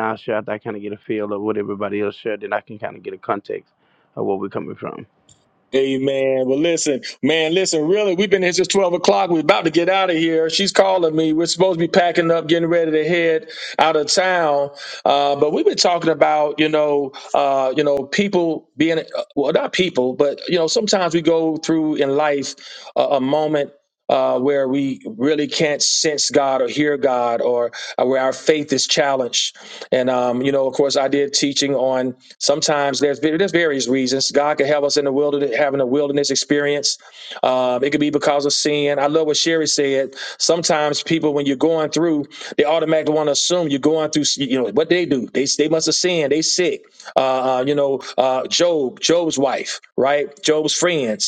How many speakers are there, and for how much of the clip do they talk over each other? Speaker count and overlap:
two, no overlap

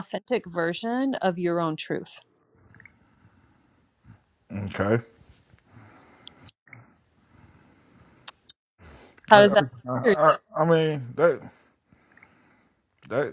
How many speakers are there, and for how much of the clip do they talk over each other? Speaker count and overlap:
two, about 3%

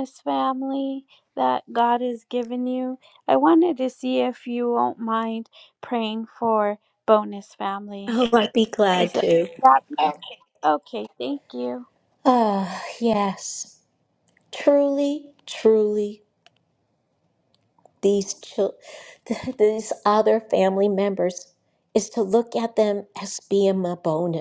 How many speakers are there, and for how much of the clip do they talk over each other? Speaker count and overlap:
two, about 1%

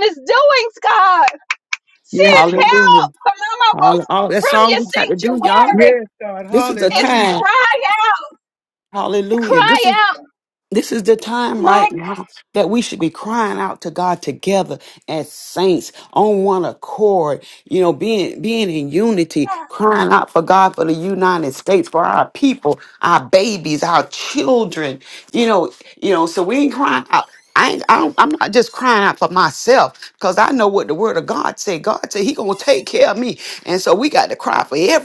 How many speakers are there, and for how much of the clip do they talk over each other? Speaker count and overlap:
three, about 14%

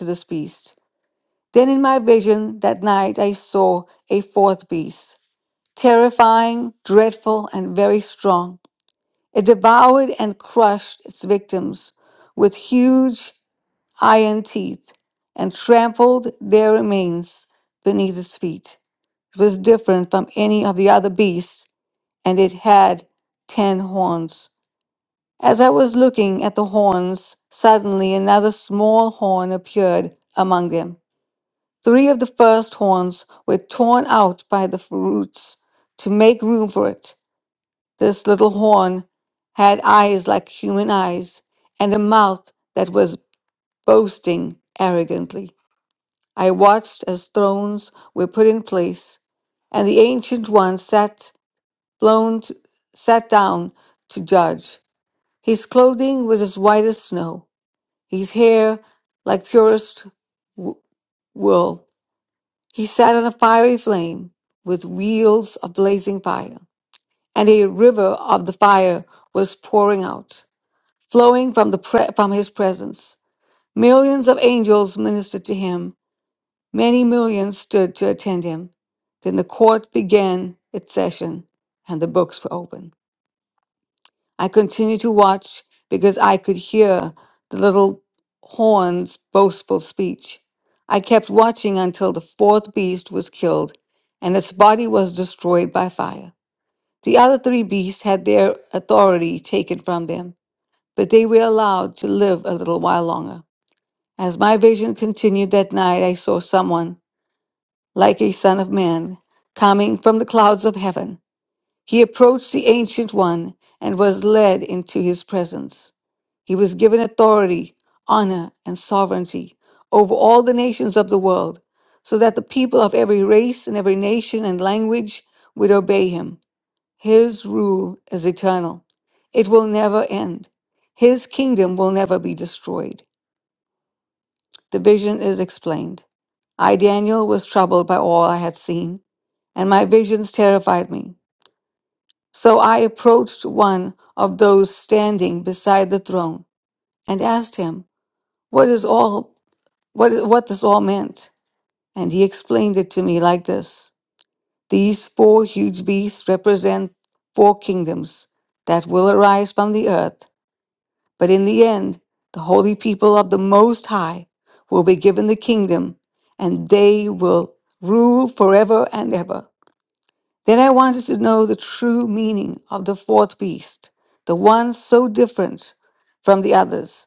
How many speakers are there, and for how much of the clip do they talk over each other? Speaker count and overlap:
one, no overlap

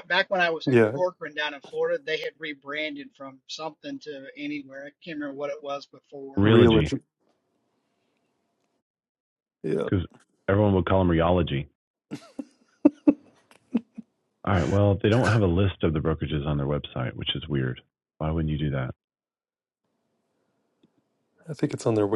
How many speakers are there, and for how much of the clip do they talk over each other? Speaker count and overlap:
three, about 4%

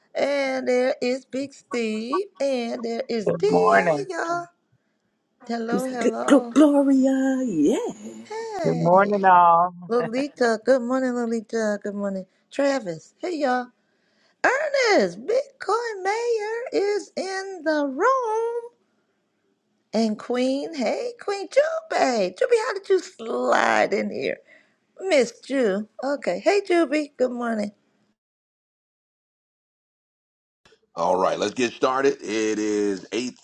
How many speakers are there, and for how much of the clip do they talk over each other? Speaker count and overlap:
four, about 7%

